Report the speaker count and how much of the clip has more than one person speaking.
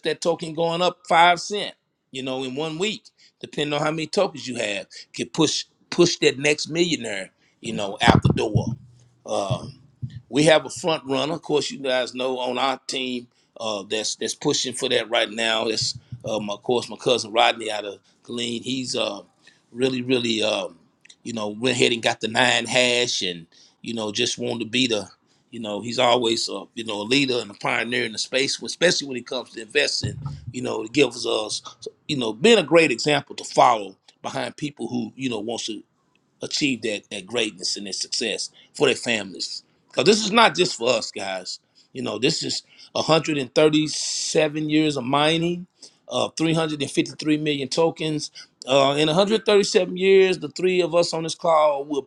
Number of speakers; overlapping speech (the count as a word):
one, no overlap